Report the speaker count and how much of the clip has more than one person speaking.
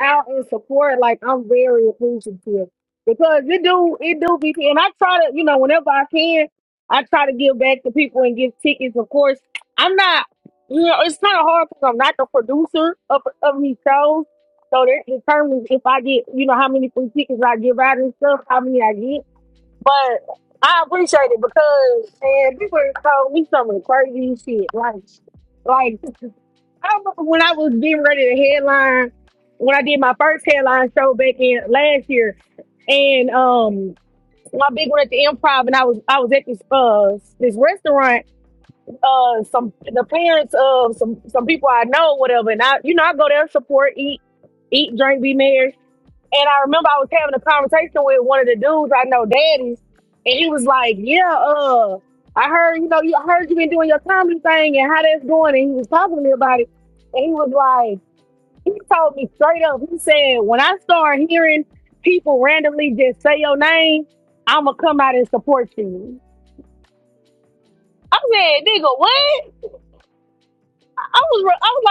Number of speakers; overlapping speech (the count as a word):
one, no overlap